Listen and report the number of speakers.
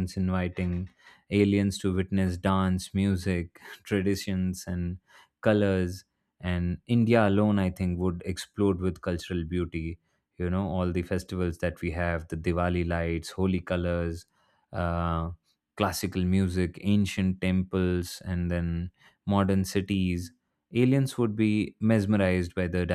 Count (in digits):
1